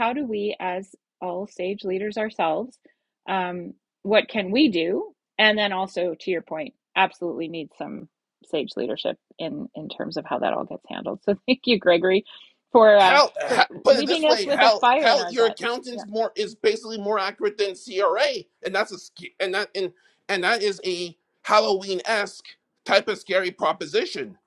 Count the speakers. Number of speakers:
2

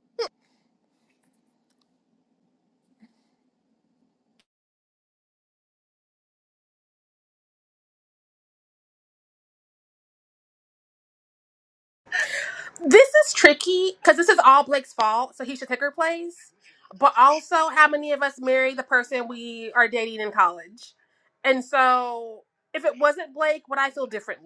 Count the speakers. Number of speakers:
1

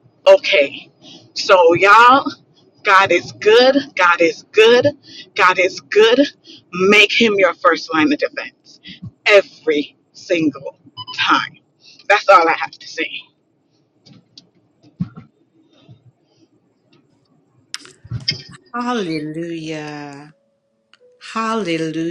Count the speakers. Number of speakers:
2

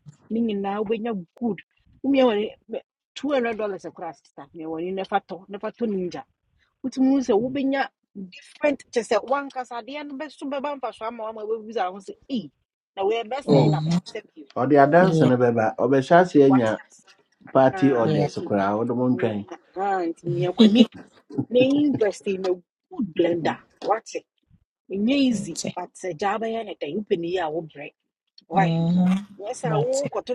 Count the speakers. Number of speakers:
3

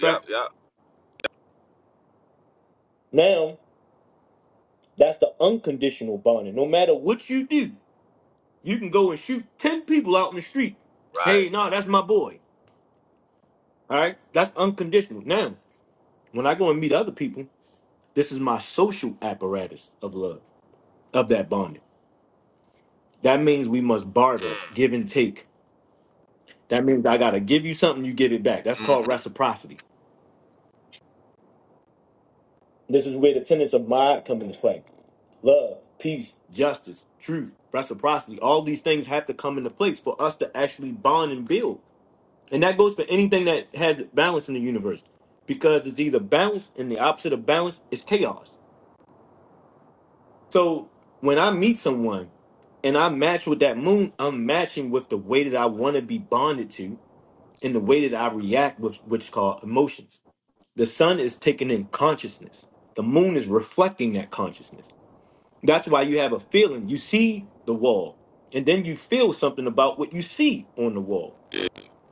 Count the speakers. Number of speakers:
2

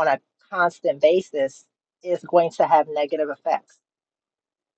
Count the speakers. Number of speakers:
1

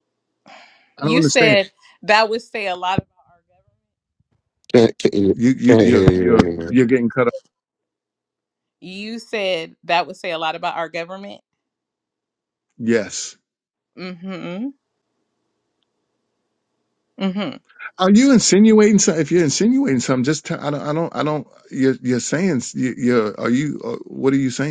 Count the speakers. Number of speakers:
3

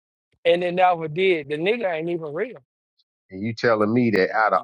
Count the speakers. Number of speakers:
2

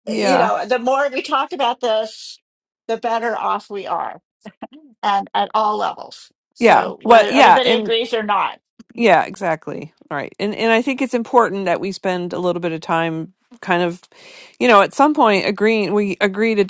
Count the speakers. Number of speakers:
2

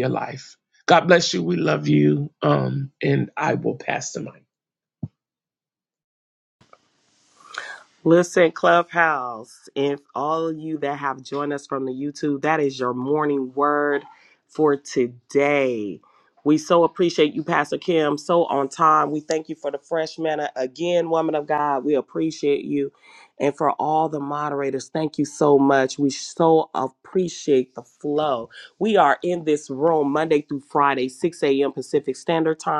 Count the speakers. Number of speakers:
2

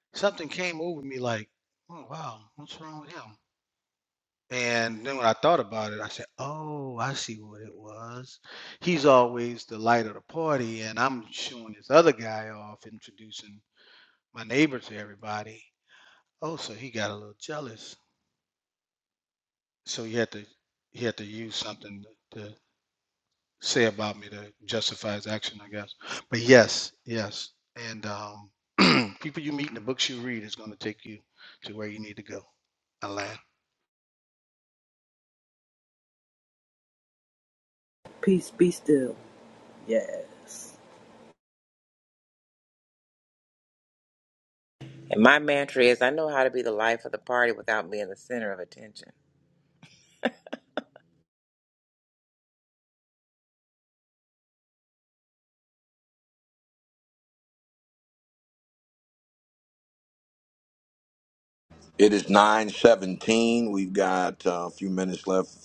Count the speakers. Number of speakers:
4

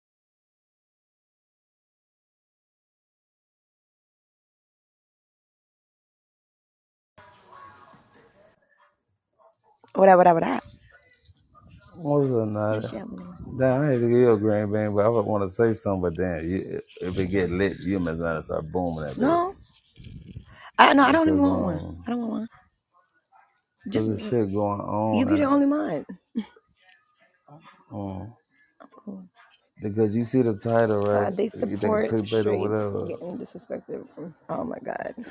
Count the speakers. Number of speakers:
2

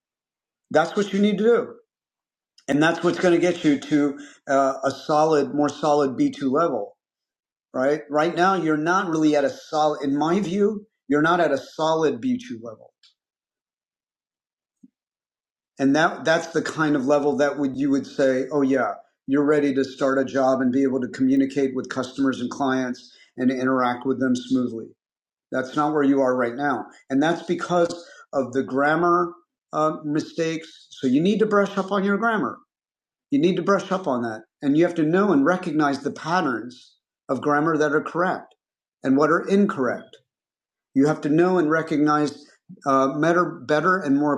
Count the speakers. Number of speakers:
1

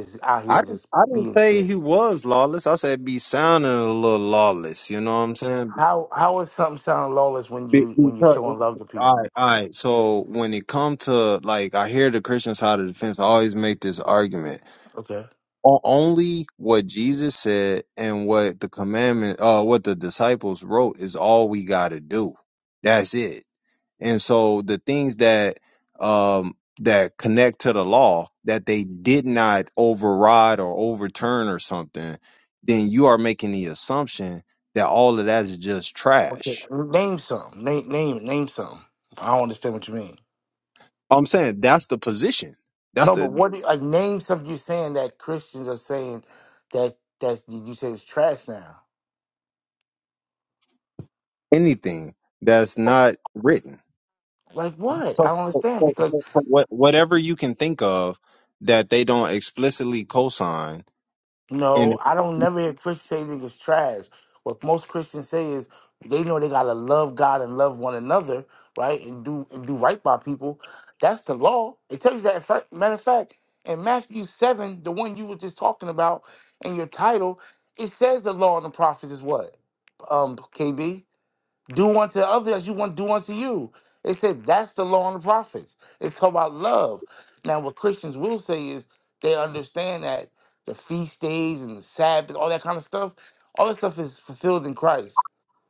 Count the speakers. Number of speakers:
2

